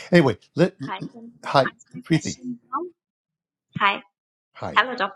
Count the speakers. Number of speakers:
2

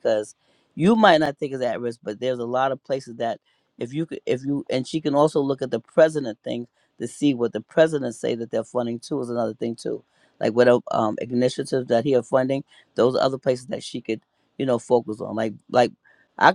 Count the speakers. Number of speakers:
1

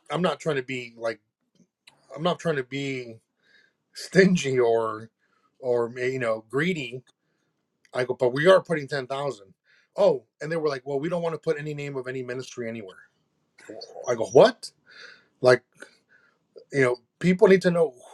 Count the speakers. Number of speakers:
1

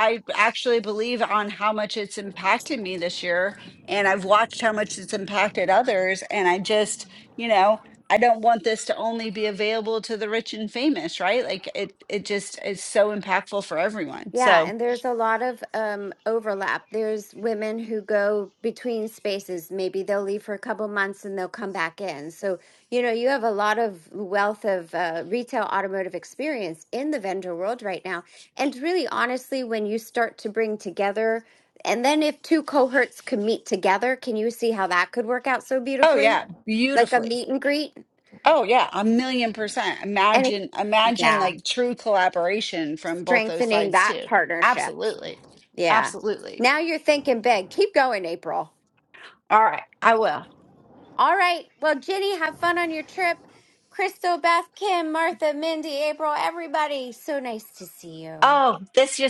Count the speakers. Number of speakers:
2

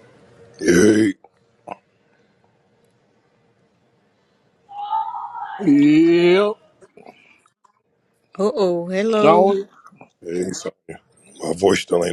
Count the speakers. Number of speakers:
3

